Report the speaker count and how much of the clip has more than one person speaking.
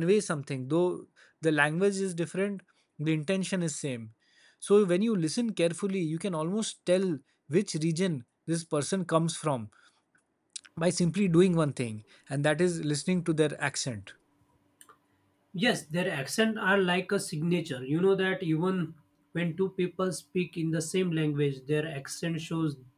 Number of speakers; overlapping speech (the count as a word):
two, no overlap